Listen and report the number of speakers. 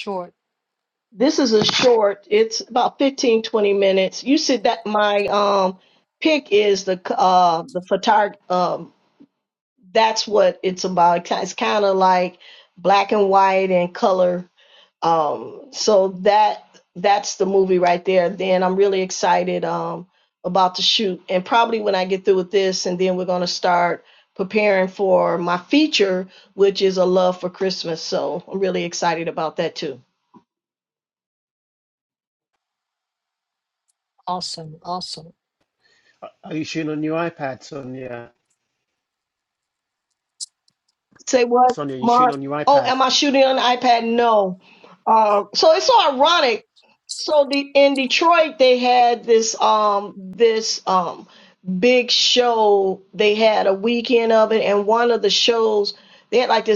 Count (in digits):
3